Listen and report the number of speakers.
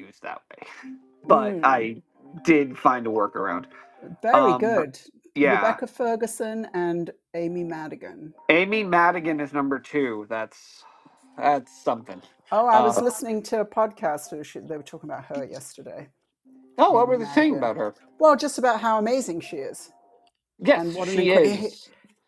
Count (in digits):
2